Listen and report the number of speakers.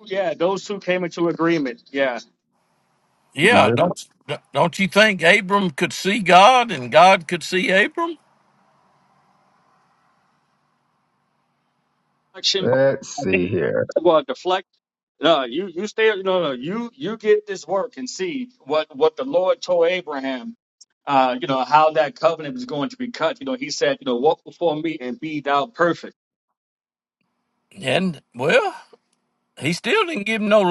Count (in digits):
3